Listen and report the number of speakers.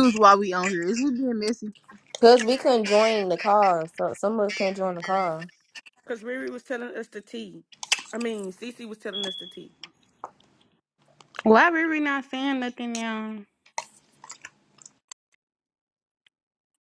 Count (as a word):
four